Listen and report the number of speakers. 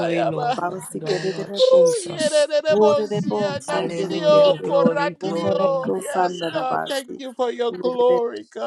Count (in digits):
3